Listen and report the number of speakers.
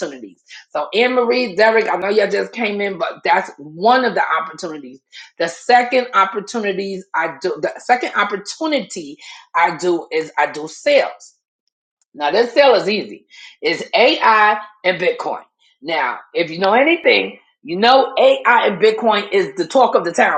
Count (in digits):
1